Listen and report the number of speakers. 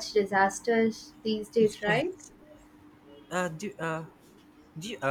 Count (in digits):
2